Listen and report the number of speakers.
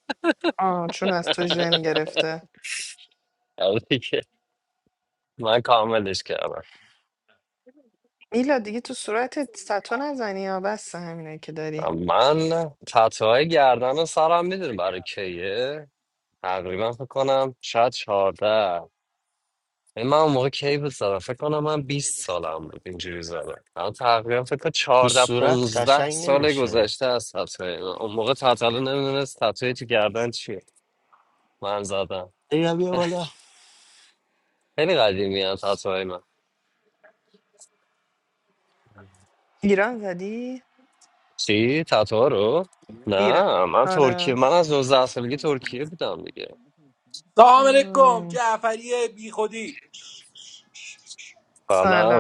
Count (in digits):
4